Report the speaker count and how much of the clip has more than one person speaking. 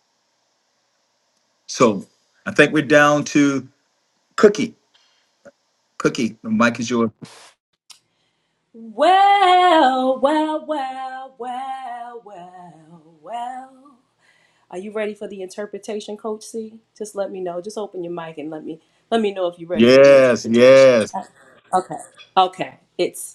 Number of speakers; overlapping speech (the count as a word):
two, about 5%